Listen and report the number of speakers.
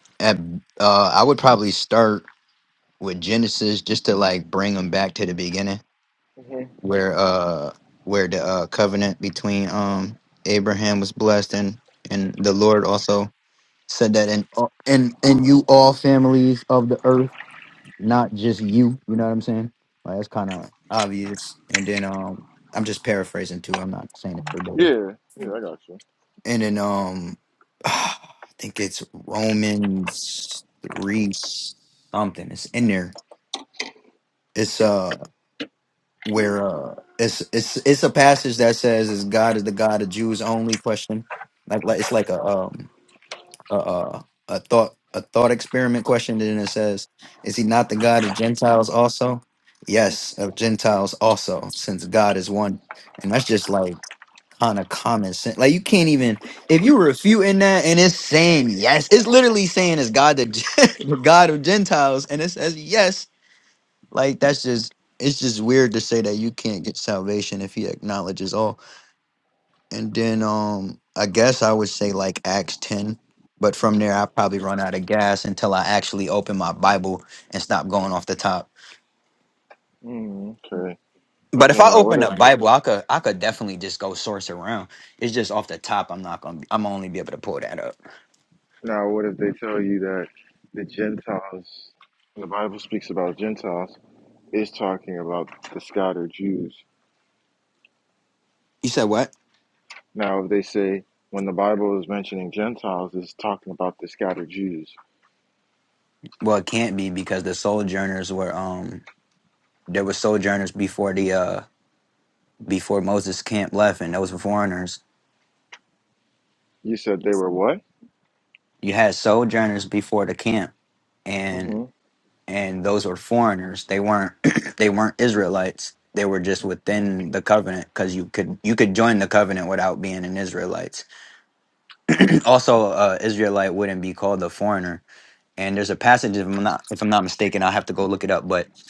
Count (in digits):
2